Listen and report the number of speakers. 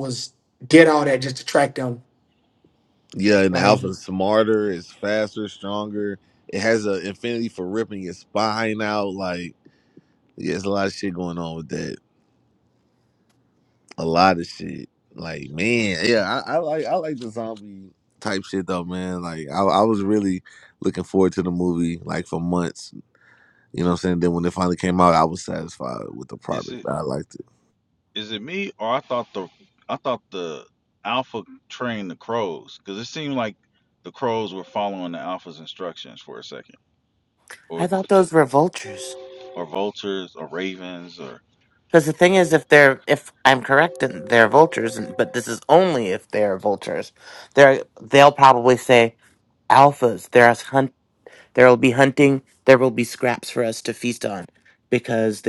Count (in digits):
4